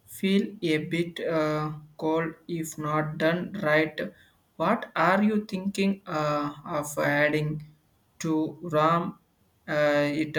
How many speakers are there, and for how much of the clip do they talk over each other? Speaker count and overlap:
one, no overlap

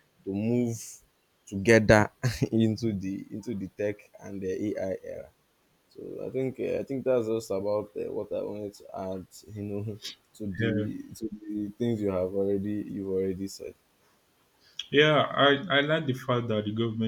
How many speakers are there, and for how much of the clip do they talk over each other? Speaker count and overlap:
two, about 2%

